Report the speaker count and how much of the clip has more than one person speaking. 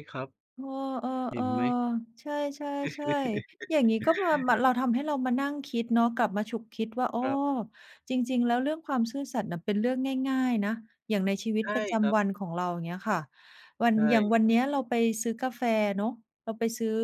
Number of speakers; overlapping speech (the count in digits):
2, about 5%